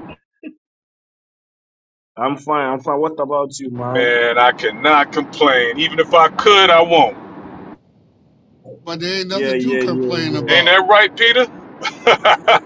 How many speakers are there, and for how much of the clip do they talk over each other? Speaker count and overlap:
three, about 13%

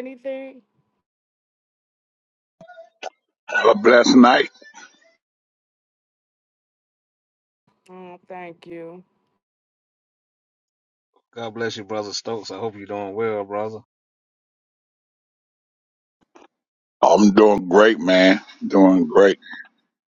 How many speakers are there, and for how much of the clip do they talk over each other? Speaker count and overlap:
three, no overlap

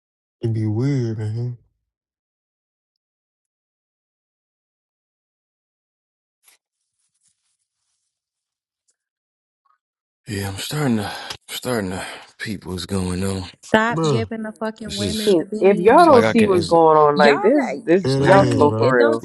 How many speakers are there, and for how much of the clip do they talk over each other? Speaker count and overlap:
four, about 22%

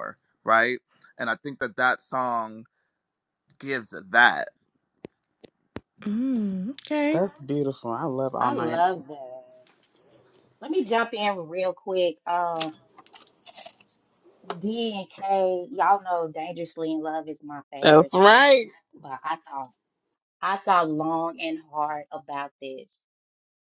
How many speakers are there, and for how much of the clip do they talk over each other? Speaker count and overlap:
four, about 5%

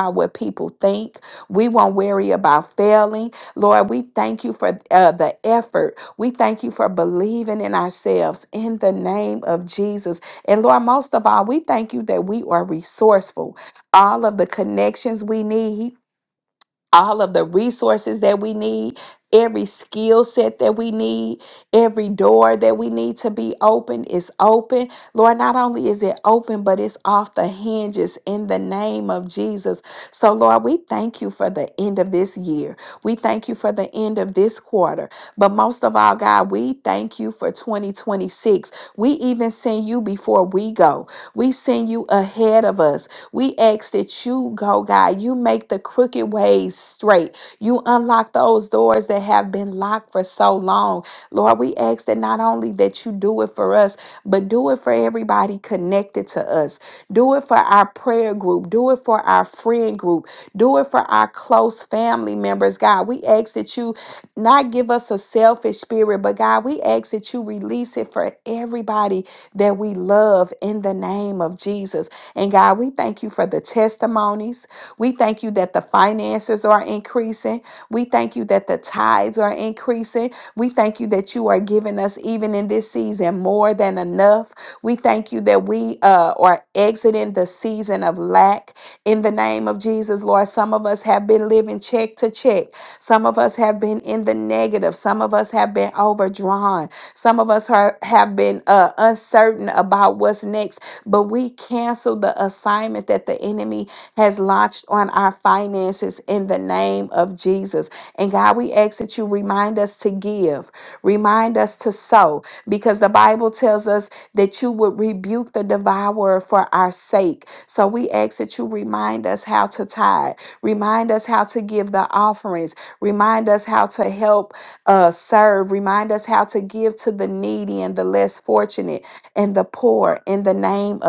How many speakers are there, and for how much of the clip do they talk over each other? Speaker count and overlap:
one, no overlap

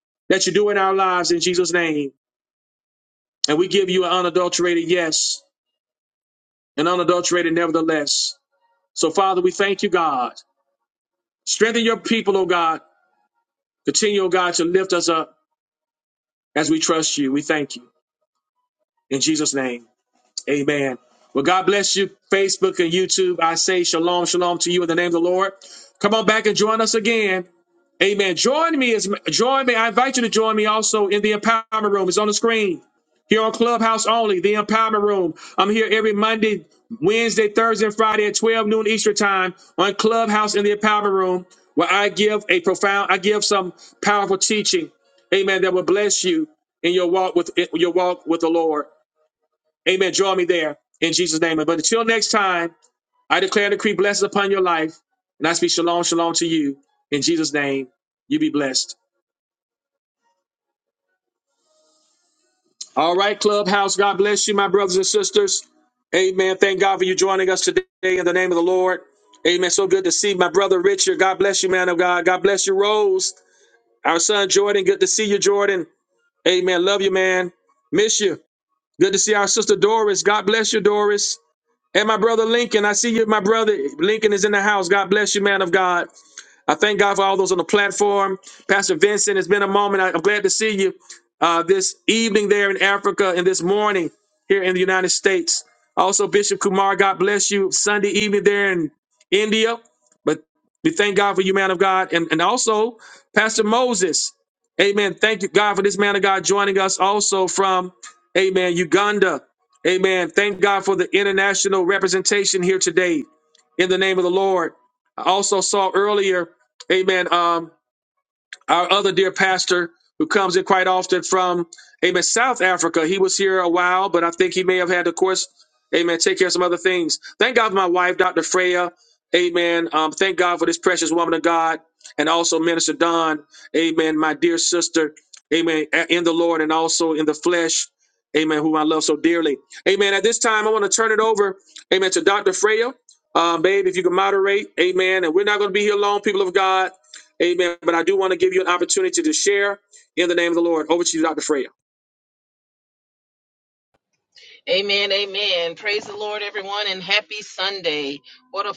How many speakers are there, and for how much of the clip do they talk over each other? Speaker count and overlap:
two, no overlap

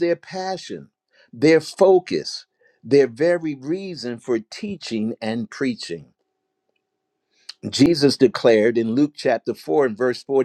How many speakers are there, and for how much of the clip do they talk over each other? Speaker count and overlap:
one, no overlap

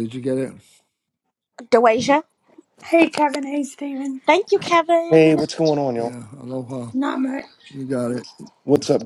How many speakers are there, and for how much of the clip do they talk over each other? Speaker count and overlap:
four, about 5%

